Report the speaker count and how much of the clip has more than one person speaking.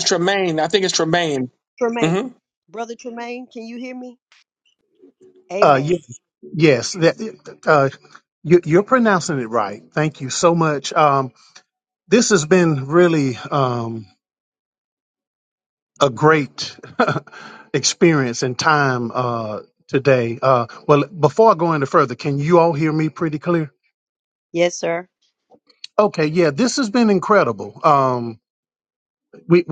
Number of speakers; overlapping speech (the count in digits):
3, about 2%